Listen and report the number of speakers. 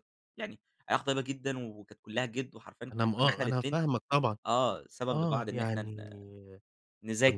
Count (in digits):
2